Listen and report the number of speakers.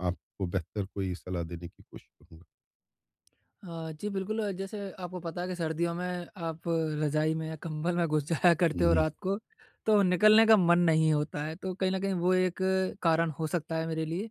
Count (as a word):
two